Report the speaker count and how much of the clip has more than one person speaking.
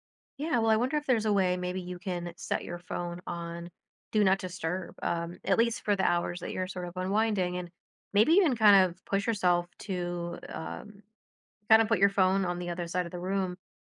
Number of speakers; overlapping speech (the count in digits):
1, no overlap